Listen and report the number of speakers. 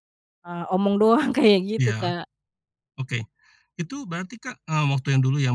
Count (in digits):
2